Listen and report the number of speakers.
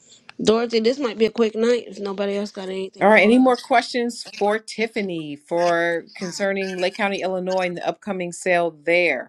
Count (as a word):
two